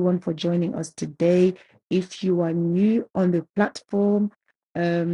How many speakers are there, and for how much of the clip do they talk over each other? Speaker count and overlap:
one, no overlap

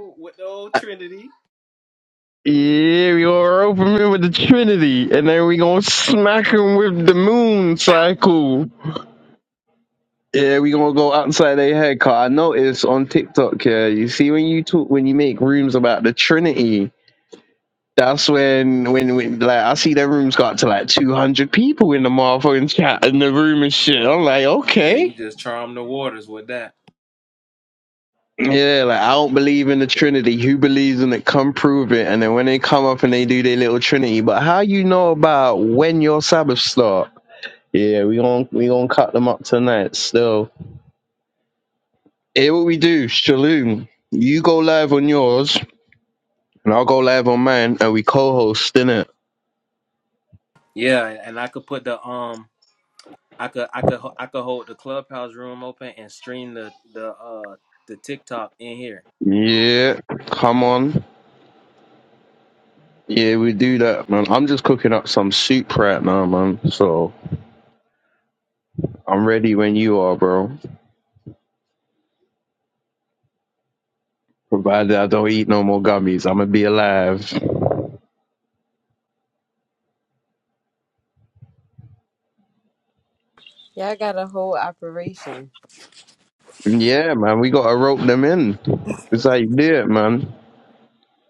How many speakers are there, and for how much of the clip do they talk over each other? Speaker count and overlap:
three, about 1%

